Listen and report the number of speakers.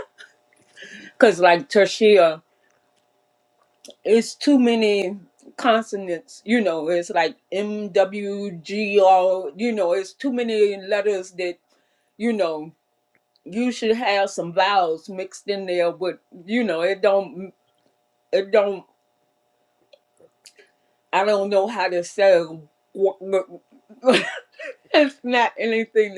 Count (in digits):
1